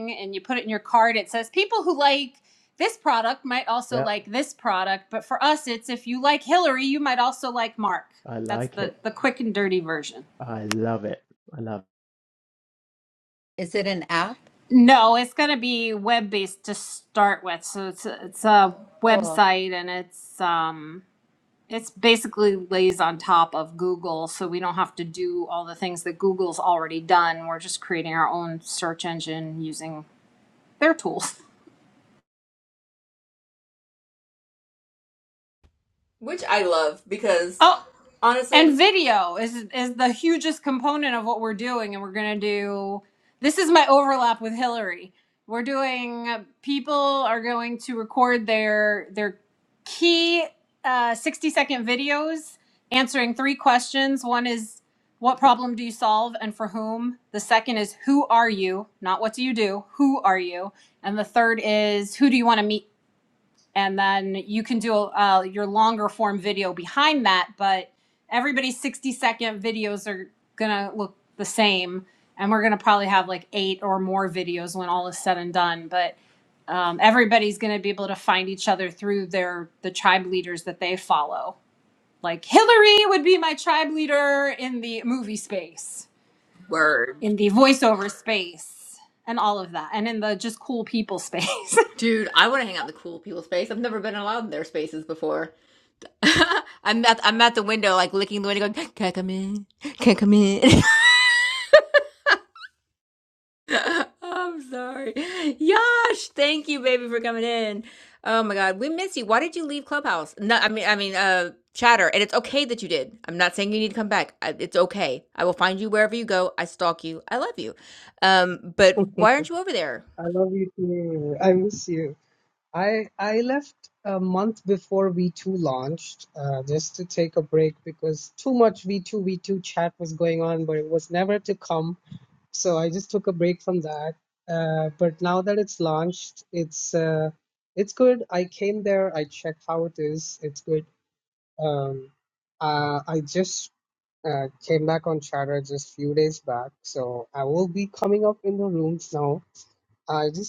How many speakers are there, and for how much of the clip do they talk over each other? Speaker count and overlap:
five, about 1%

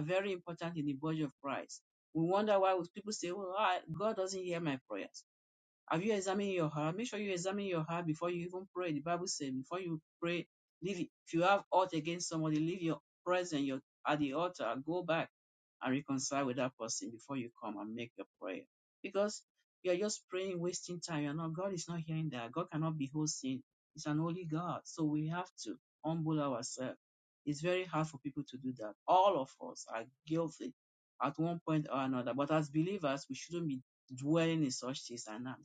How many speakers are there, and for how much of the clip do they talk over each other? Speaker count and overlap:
one, no overlap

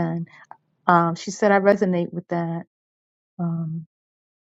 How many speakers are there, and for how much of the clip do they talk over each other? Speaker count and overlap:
one, no overlap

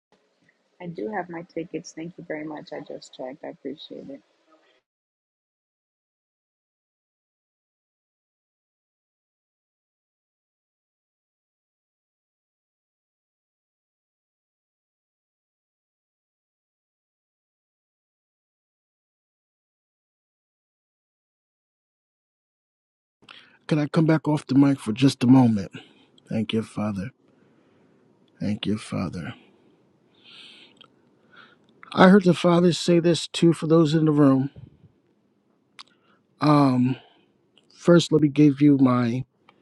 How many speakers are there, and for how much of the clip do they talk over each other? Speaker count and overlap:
two, no overlap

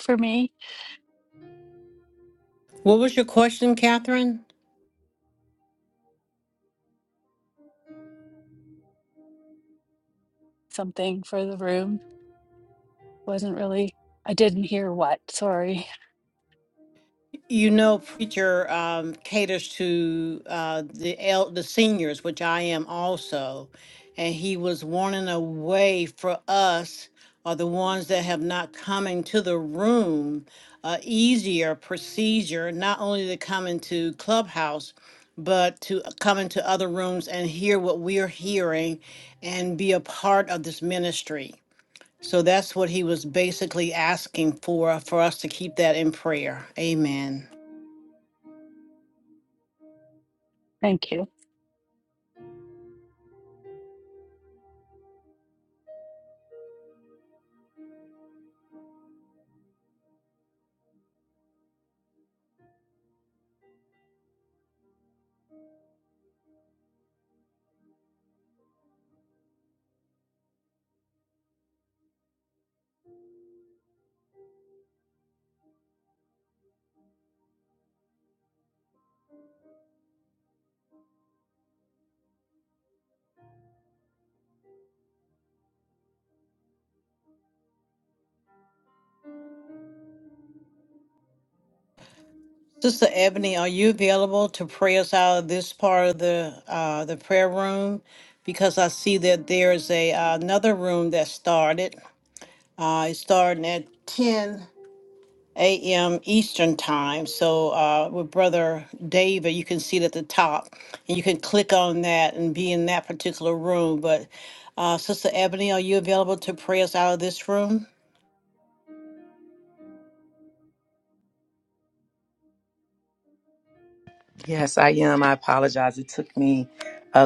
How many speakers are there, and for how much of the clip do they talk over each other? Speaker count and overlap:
three, no overlap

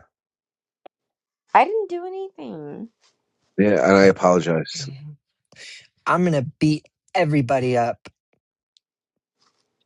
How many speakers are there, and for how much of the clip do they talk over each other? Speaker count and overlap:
three, about 1%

